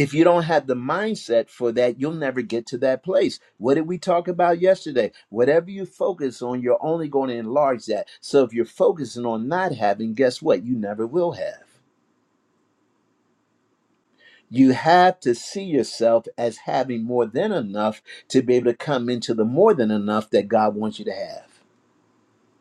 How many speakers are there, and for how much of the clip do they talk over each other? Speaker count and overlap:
1, no overlap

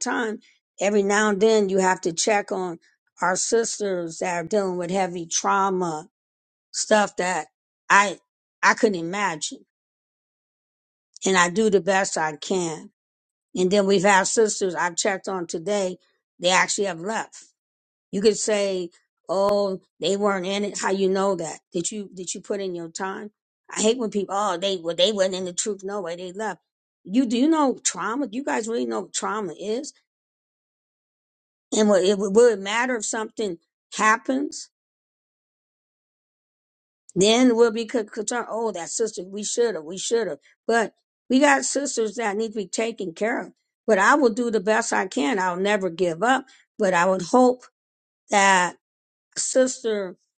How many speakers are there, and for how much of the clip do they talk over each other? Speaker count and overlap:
1, no overlap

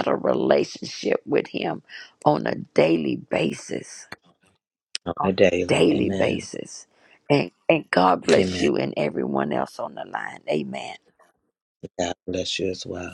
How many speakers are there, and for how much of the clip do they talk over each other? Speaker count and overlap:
2, about 10%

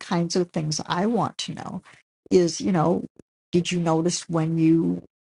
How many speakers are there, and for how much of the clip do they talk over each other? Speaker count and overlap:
1, no overlap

